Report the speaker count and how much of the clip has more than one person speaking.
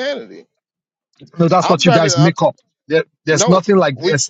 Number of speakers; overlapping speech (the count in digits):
2, about 27%